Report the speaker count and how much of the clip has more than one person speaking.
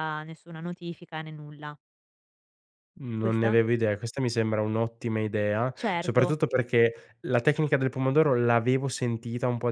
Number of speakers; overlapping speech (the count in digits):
2, about 9%